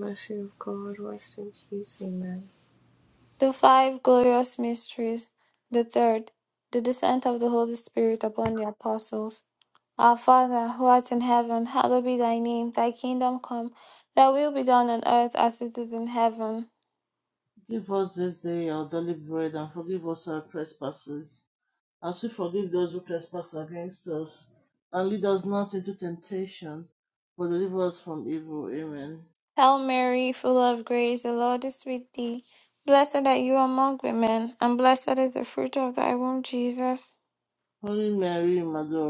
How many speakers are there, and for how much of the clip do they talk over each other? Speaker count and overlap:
3, no overlap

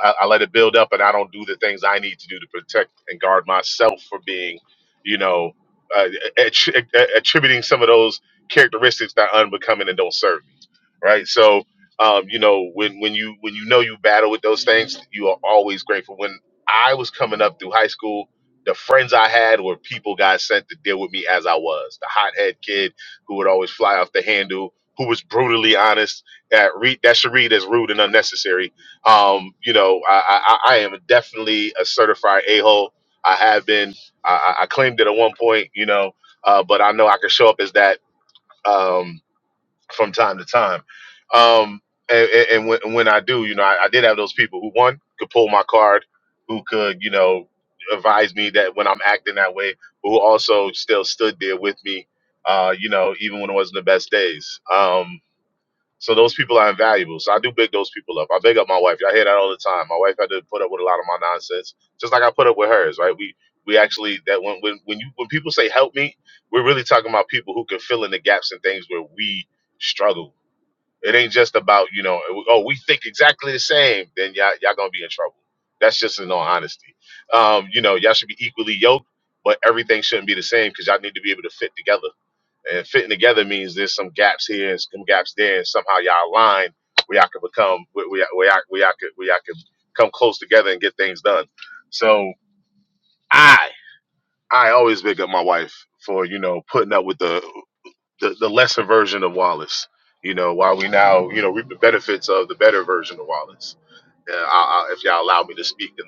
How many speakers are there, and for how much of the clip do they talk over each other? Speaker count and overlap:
1, no overlap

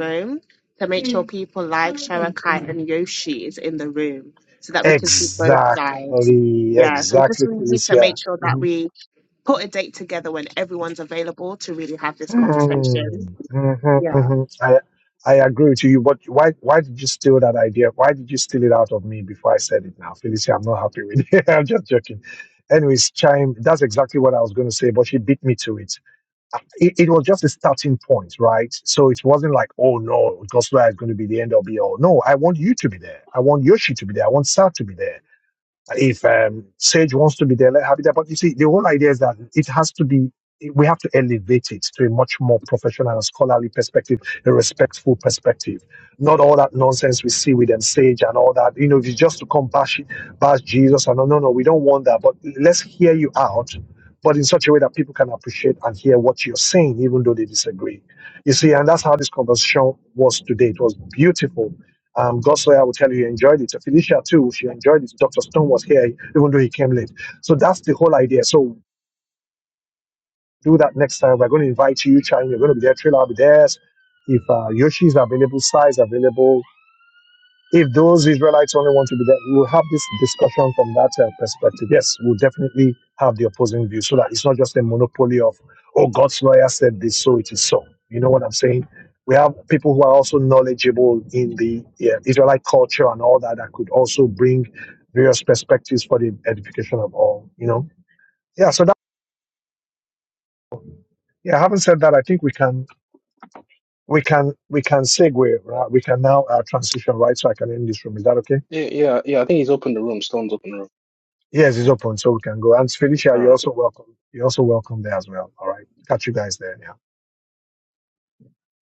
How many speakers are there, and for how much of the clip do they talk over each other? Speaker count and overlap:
3, about 3%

